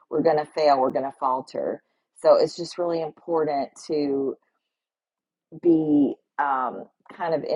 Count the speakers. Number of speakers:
1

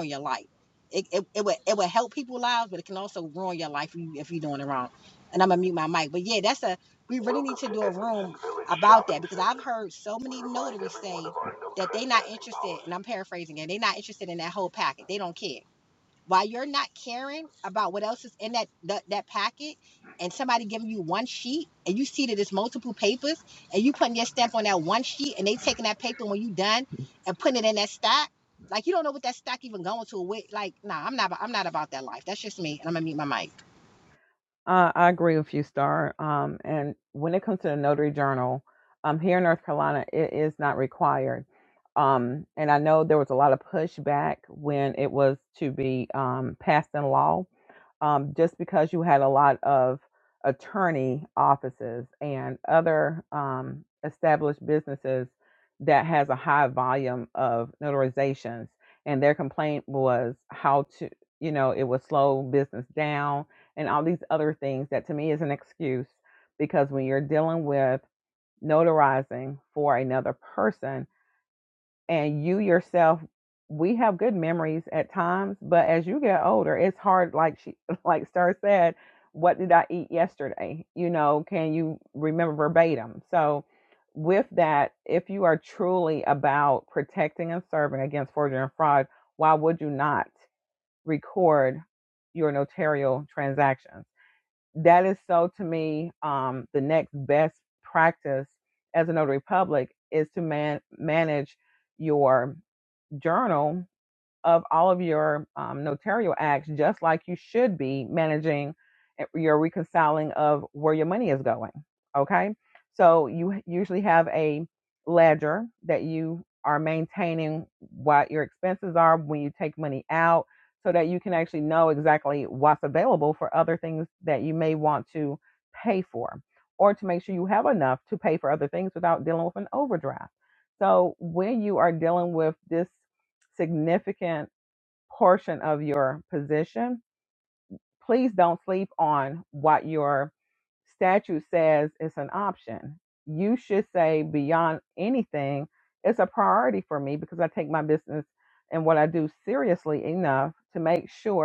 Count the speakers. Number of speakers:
2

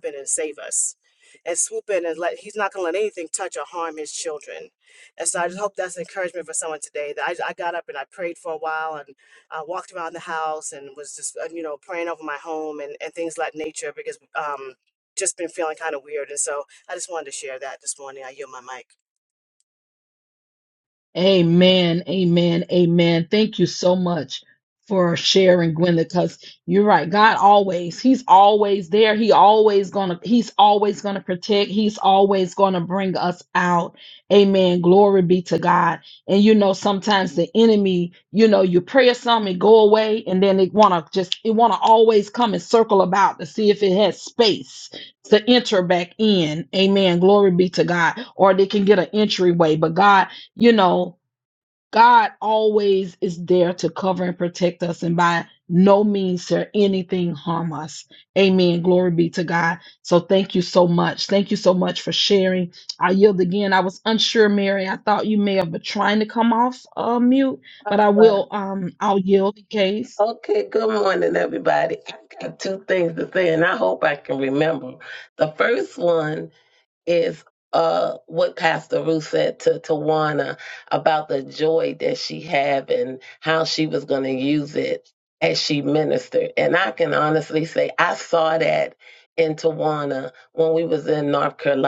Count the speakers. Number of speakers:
3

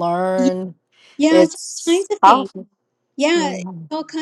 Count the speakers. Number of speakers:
2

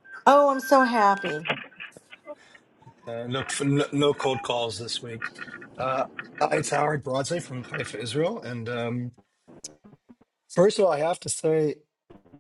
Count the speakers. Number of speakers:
2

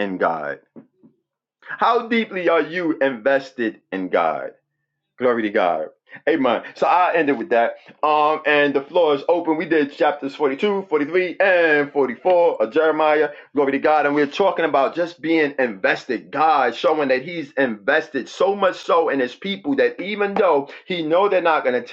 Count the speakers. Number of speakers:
1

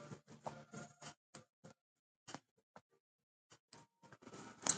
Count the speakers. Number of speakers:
0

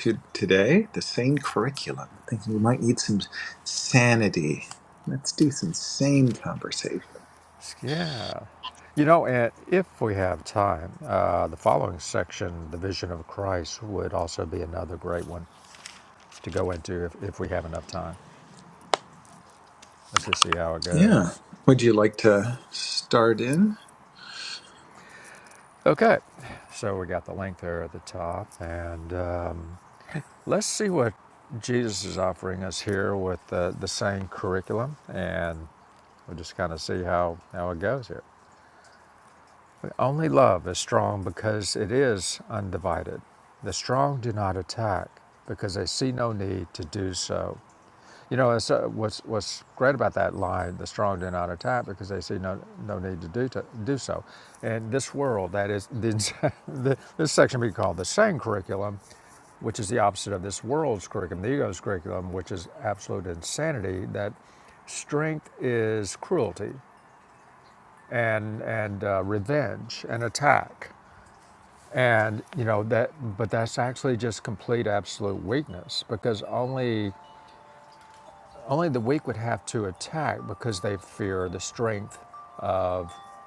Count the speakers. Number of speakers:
2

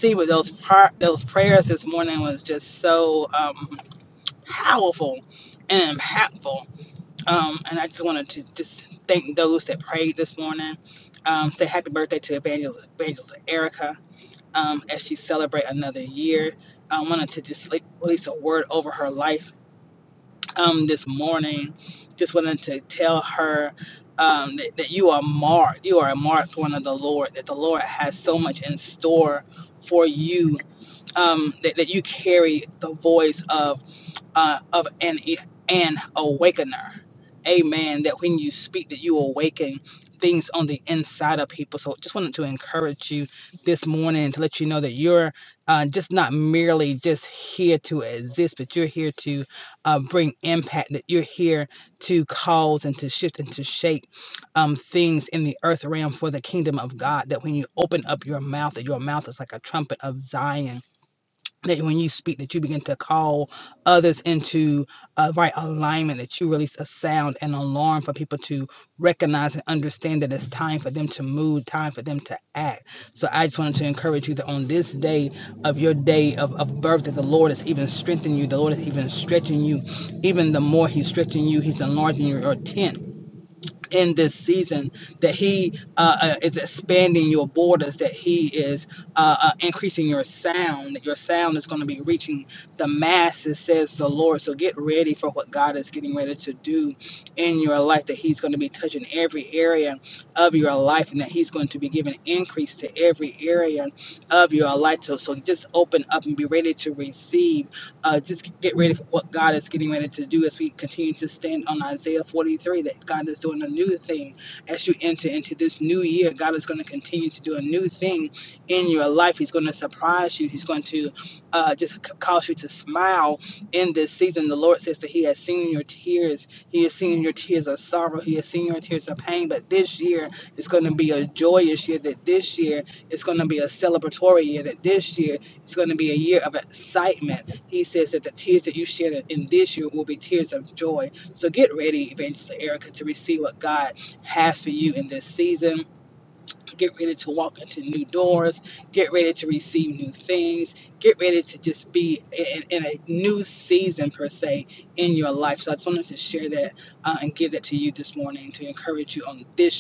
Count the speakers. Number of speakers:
1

